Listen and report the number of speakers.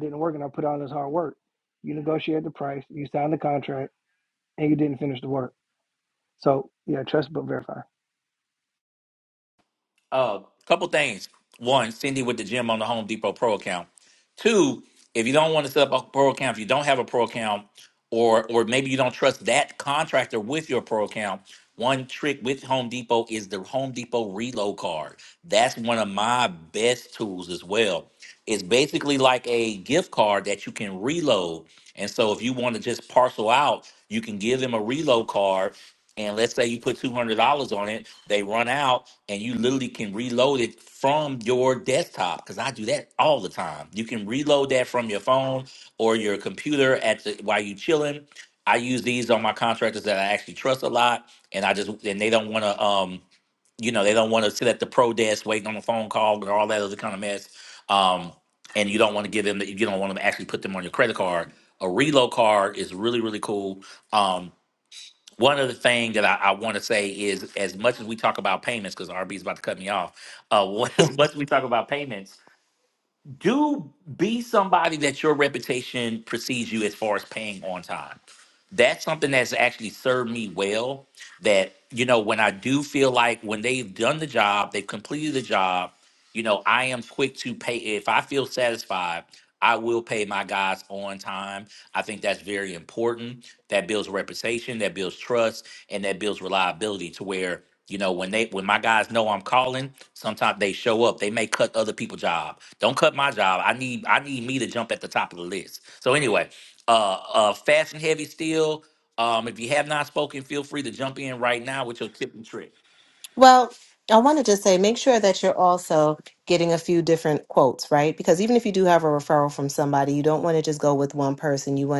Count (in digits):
3